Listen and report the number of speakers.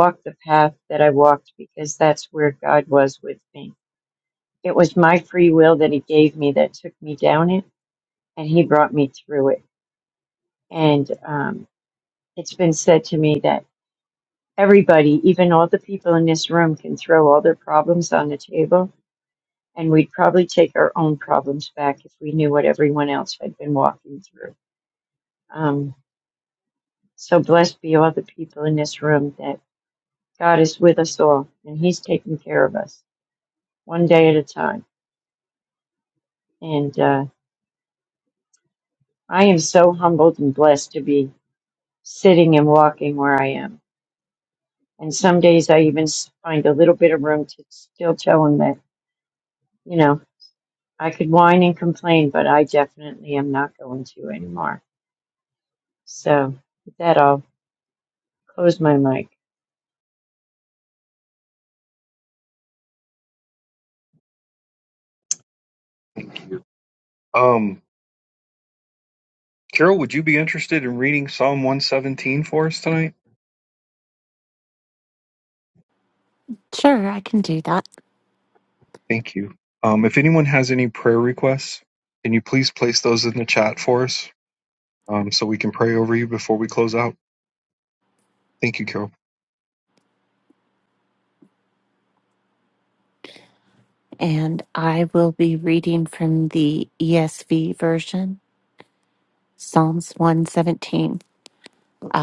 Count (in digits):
3